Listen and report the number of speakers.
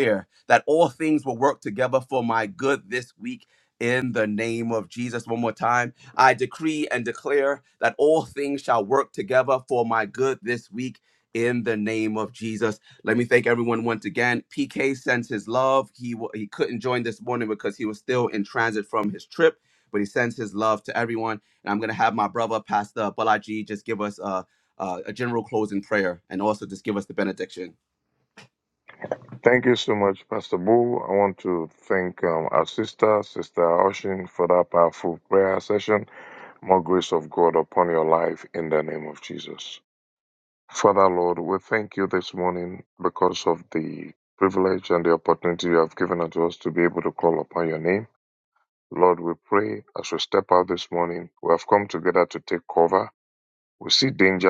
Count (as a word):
two